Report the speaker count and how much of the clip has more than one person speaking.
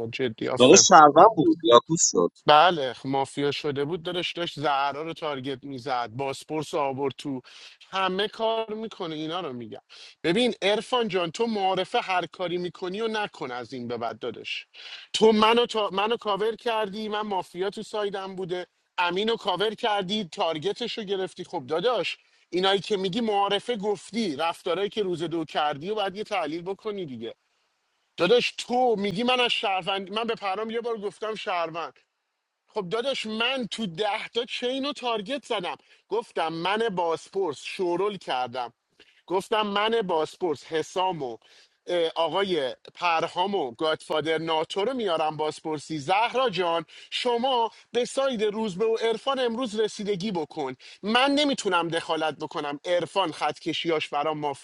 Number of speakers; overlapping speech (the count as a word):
two, no overlap